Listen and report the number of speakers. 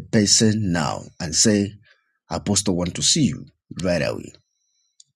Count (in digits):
1